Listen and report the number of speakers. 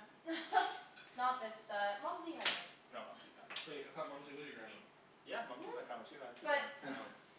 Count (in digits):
3